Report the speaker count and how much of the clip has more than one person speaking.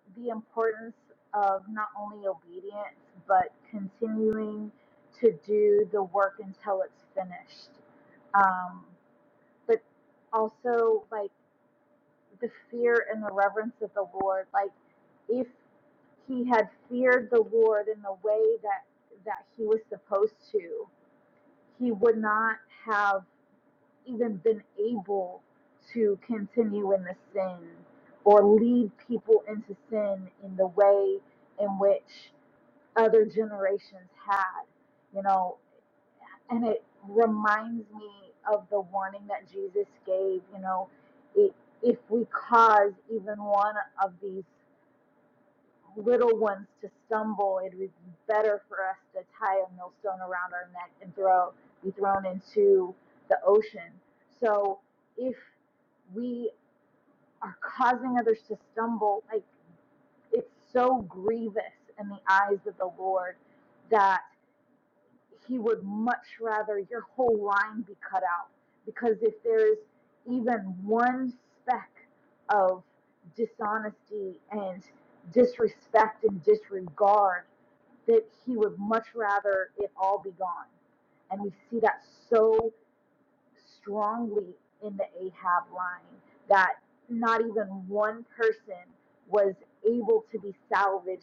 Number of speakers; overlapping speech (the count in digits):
1, no overlap